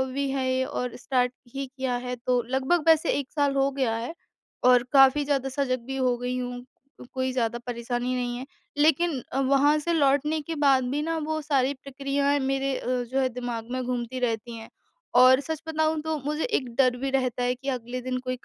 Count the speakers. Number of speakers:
one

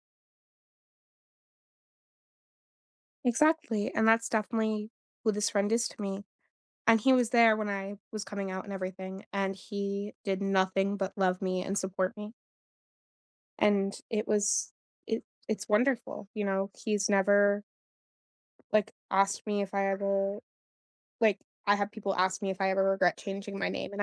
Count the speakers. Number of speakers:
one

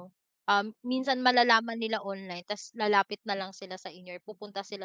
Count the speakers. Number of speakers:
one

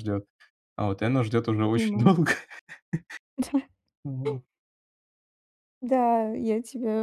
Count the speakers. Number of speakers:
two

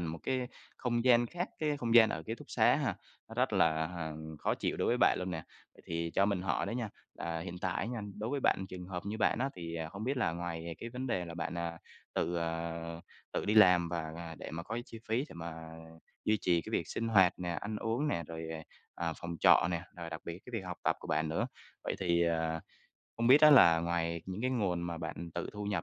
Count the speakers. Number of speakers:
one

